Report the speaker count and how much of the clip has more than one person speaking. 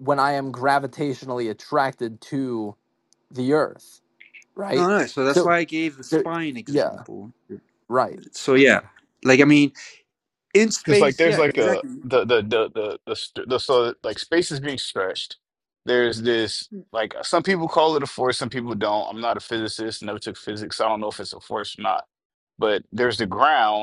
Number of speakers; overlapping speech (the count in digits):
3, about 8%